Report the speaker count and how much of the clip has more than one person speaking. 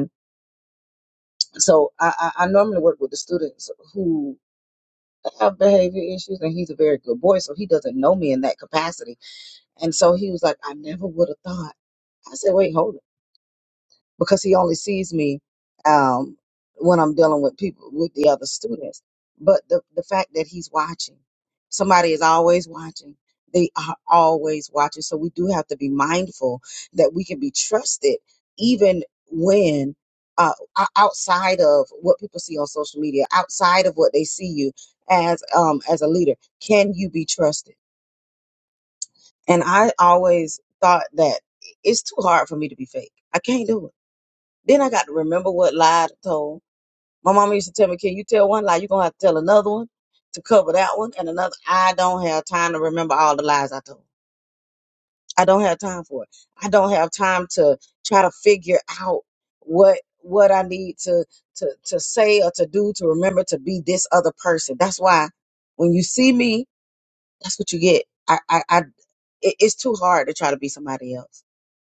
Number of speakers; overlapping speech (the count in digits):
1, no overlap